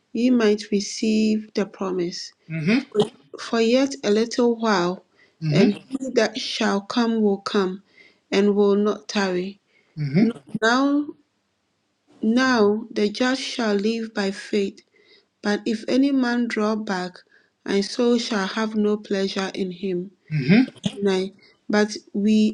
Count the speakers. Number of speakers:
2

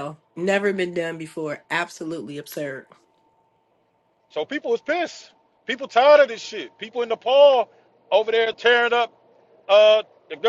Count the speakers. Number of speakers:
2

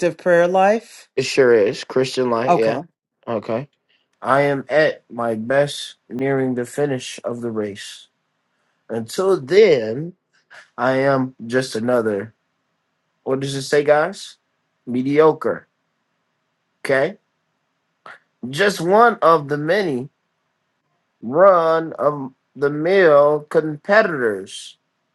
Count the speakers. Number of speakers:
2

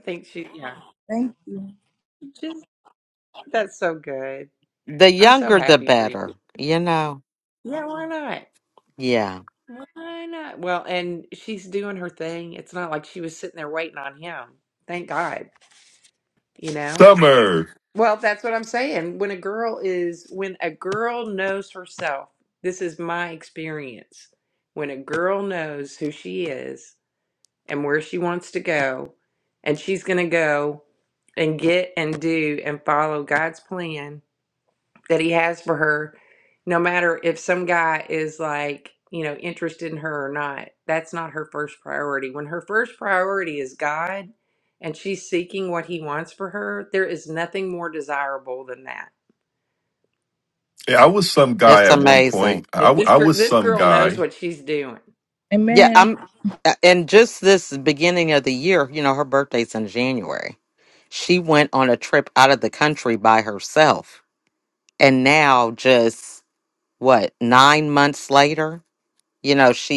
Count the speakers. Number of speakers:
4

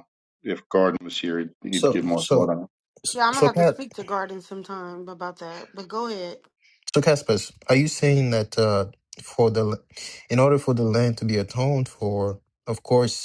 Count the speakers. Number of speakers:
3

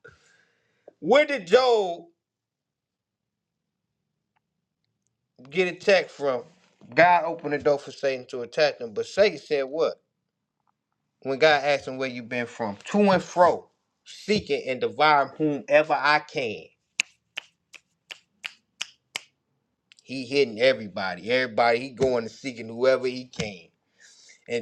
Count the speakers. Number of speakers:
1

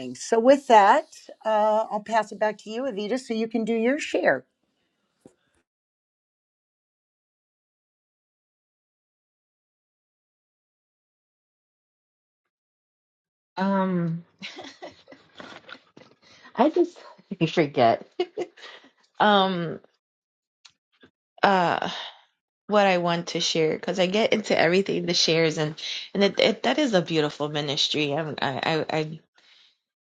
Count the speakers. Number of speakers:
2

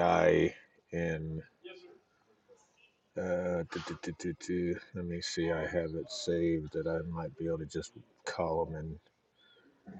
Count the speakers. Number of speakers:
1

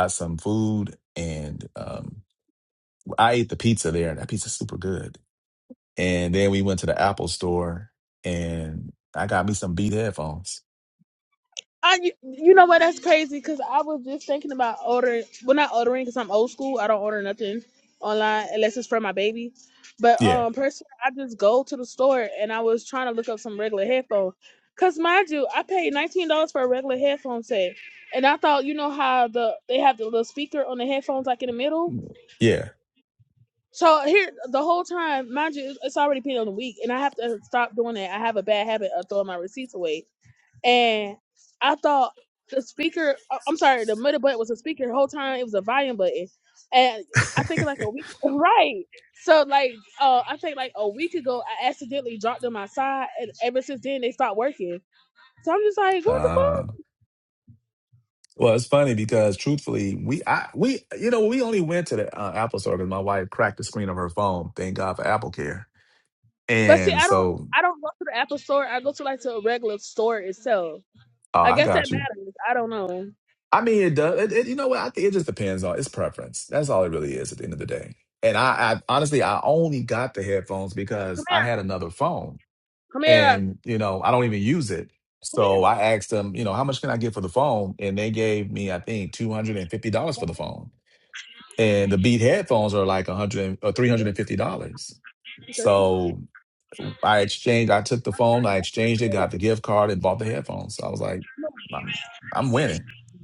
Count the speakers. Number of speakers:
2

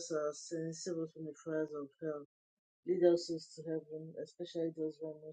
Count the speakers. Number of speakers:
1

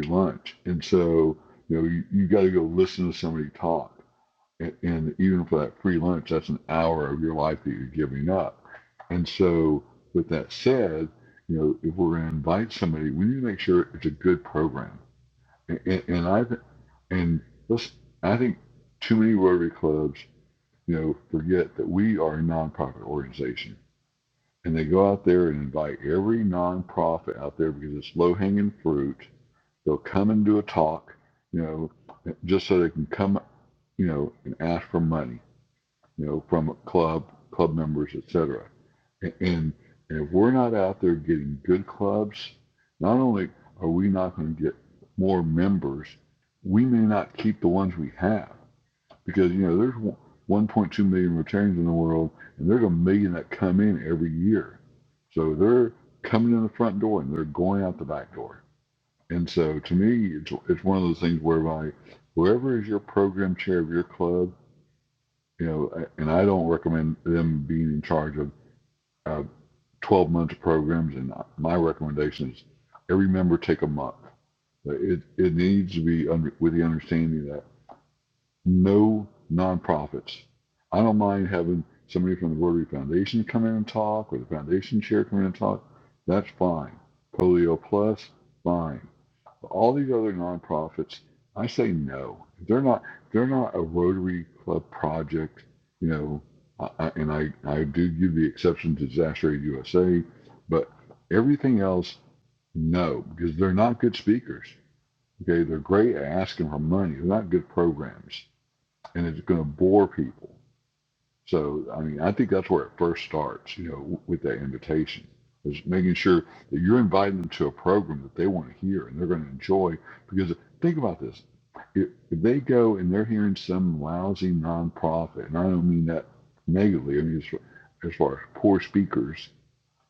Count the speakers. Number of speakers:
1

